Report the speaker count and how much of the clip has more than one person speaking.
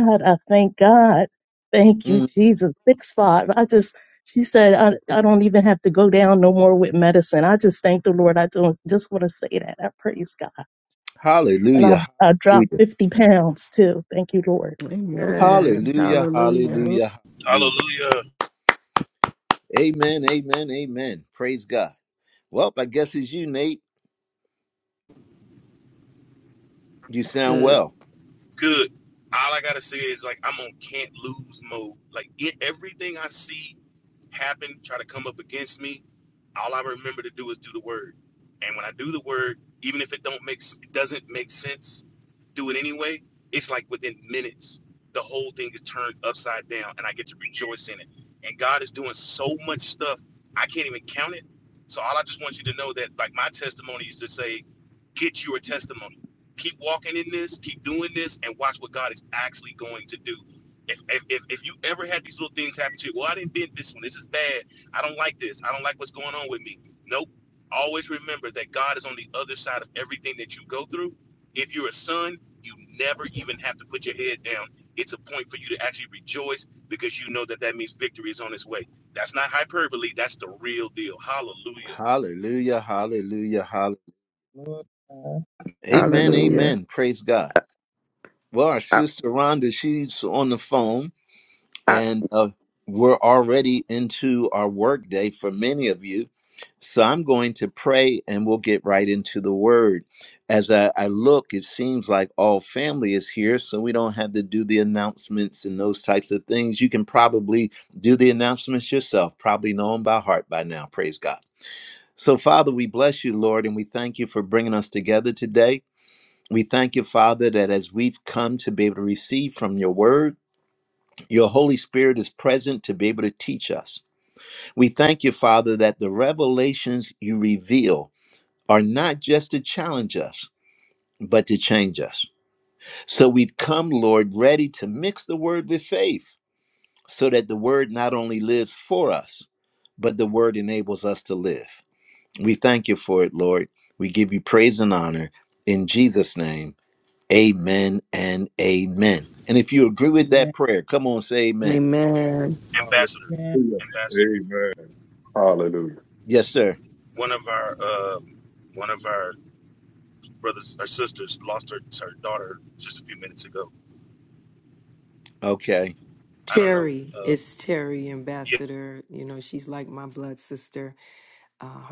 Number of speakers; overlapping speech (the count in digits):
7, about 4%